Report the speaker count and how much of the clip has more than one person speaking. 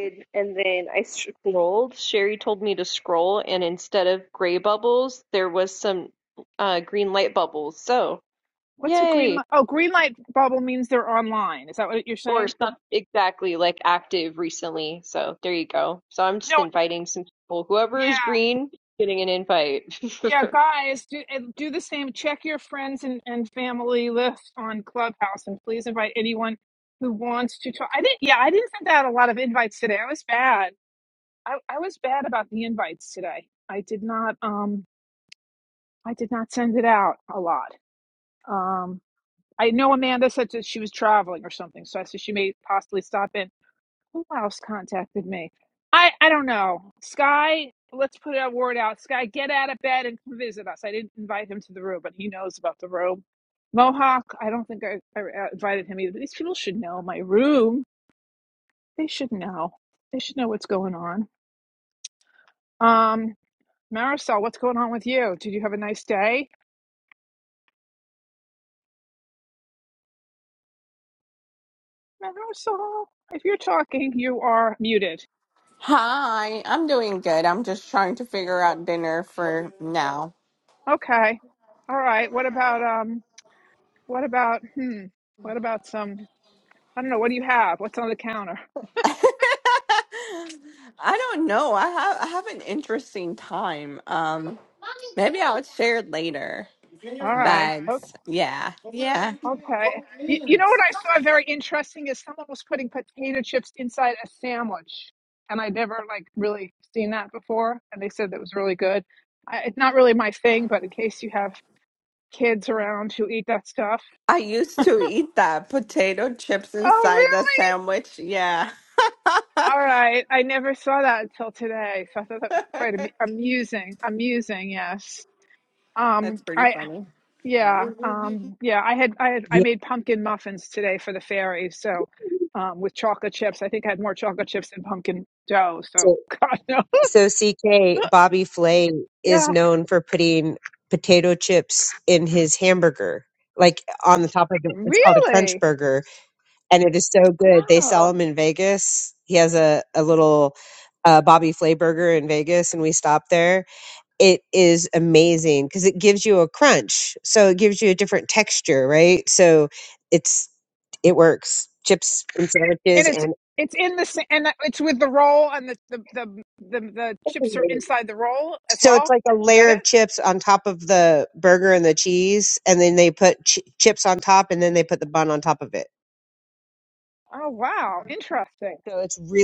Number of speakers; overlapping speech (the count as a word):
four, about 4%